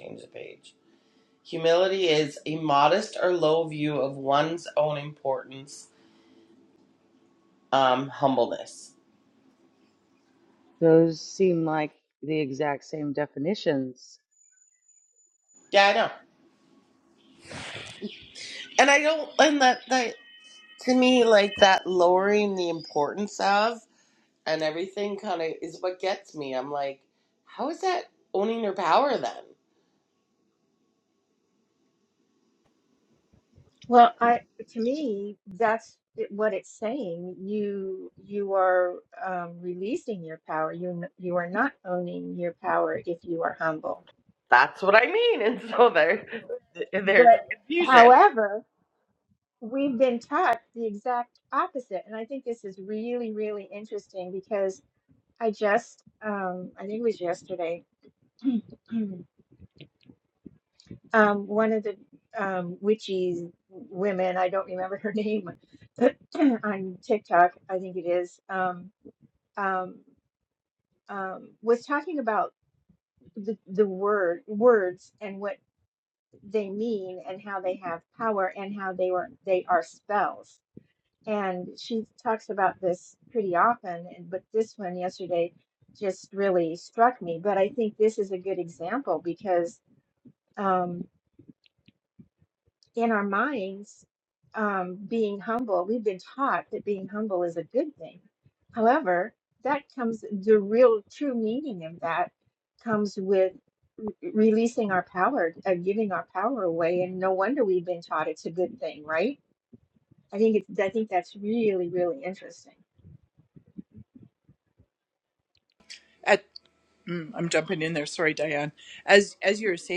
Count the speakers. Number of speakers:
four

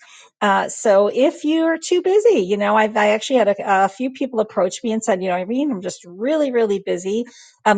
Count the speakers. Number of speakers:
one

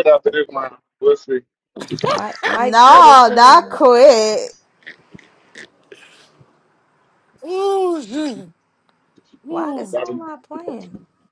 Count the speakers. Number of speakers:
four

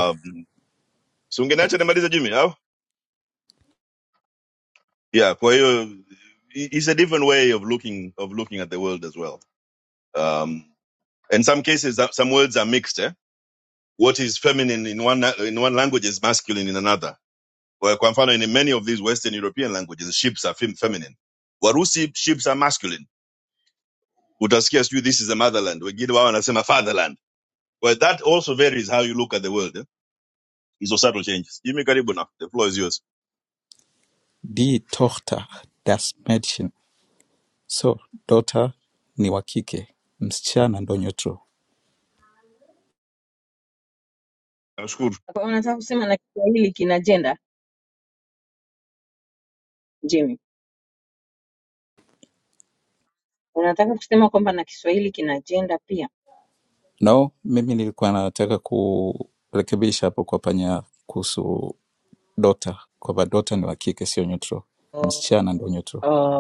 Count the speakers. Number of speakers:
three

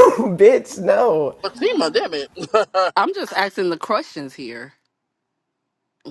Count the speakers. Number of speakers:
three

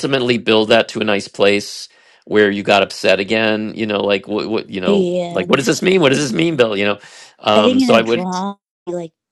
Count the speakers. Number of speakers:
two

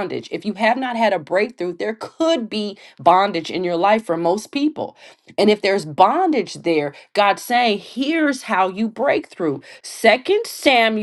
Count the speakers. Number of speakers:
one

